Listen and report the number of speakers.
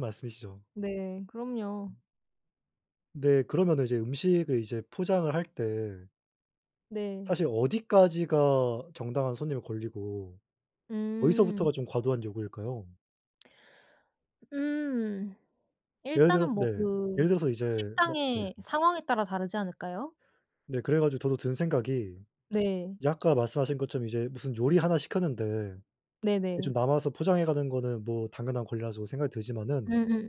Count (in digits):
2